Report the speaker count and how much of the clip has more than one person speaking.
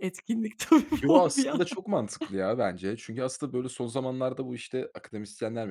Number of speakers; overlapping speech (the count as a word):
two, about 15%